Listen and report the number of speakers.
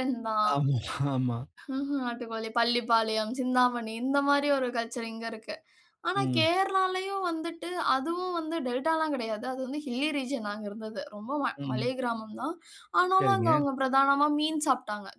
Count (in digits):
2